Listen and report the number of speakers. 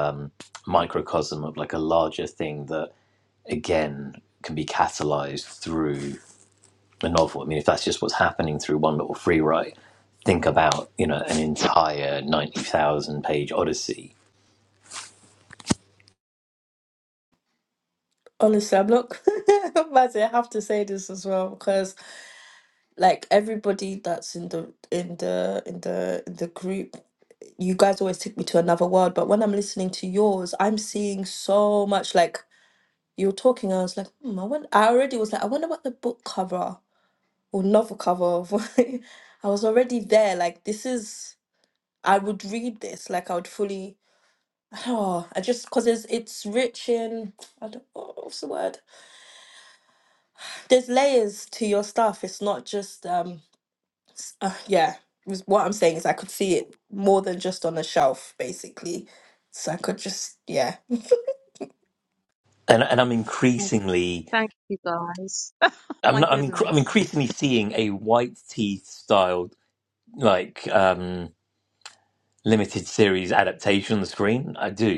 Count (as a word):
three